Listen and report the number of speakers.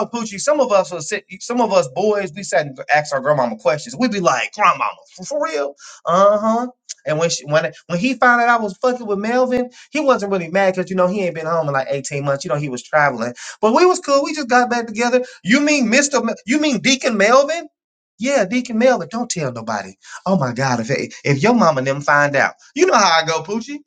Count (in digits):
1